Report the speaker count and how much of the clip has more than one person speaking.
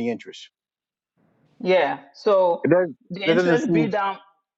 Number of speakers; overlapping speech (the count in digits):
2, about 15%